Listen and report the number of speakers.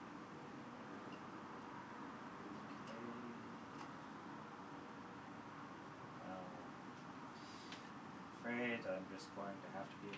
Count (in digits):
1